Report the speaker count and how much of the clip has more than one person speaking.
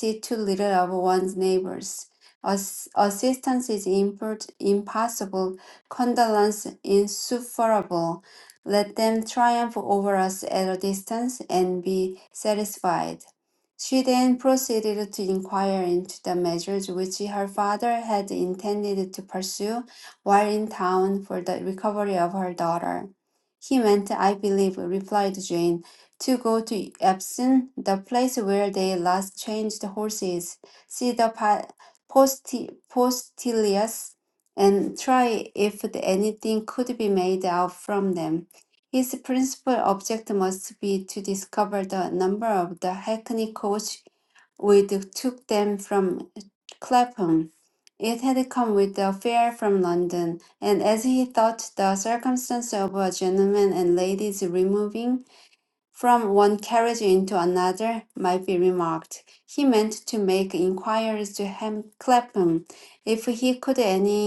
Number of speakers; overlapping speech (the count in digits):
1, no overlap